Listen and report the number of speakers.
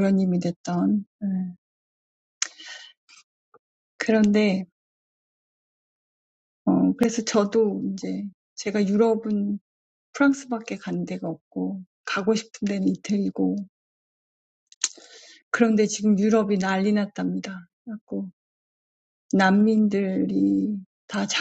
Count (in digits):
1